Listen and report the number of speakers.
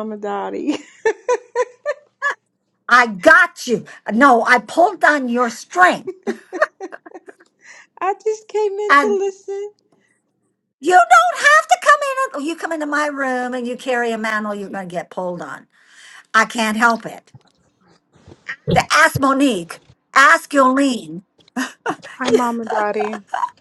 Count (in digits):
3